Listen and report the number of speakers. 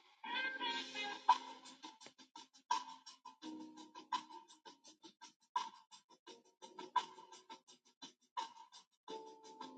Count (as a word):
zero